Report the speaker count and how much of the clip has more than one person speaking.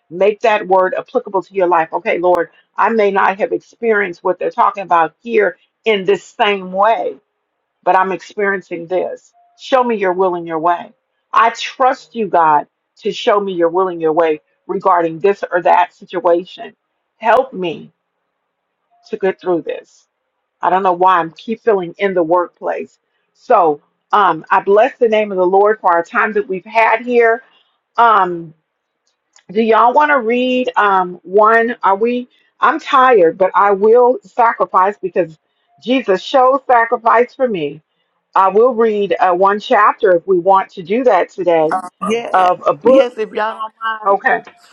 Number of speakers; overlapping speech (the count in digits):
2, about 1%